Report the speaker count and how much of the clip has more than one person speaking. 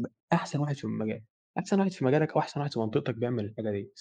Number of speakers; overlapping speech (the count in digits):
1, no overlap